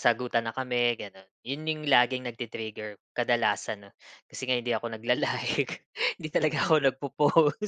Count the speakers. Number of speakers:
1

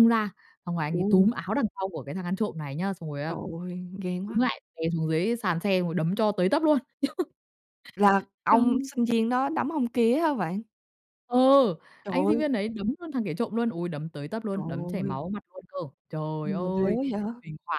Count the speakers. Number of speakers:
2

